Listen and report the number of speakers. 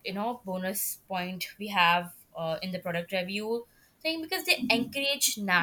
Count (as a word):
one